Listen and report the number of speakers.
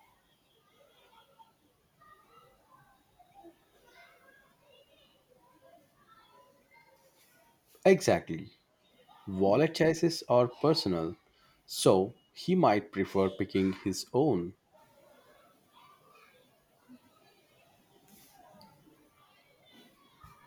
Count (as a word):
one